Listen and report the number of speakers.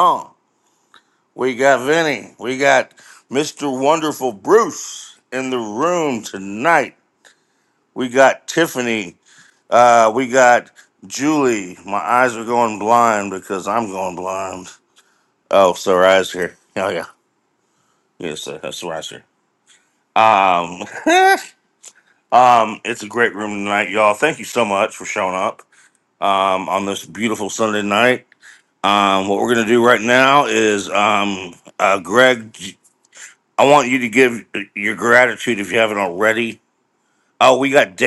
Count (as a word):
one